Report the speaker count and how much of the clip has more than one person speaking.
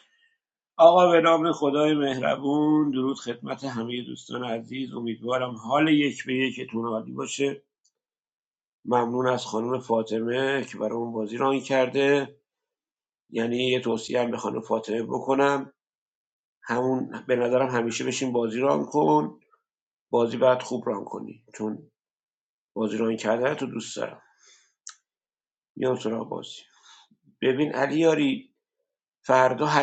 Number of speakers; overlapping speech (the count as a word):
one, no overlap